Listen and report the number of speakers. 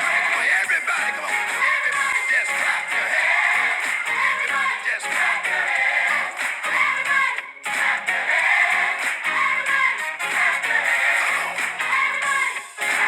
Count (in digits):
0